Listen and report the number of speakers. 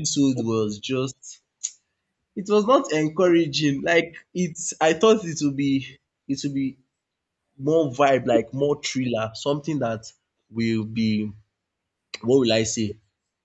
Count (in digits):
1